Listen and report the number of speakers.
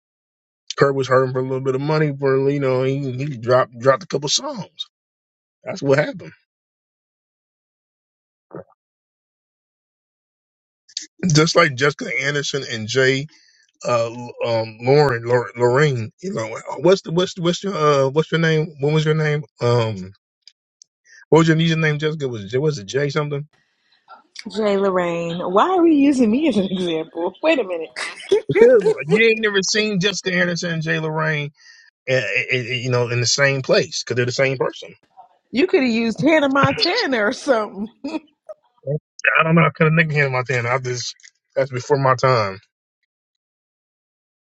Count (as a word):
two